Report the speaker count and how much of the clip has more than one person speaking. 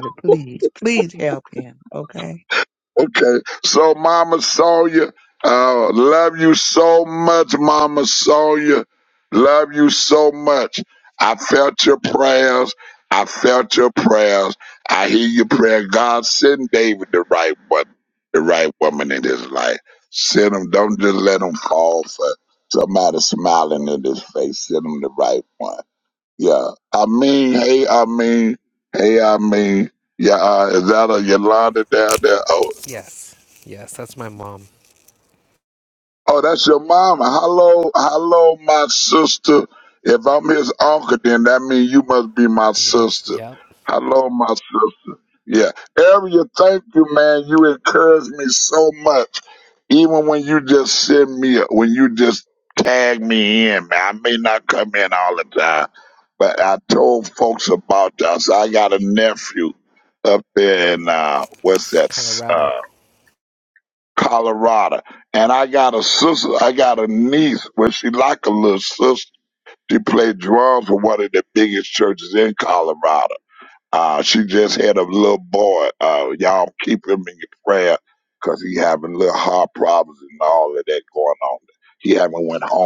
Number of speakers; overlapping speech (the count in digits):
3, about 2%